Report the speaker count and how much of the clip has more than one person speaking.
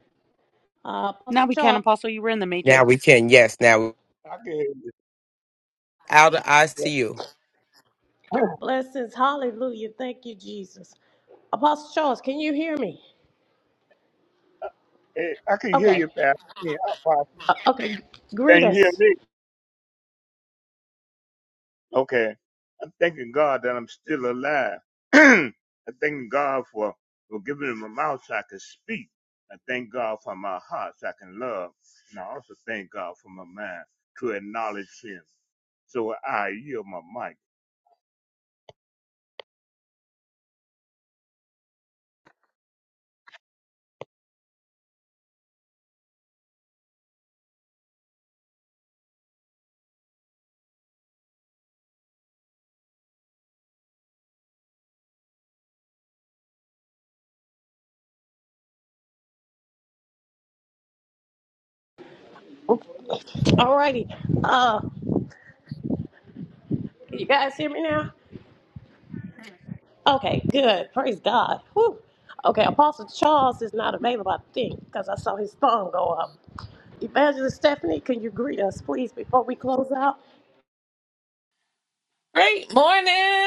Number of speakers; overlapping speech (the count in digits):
5, about 2%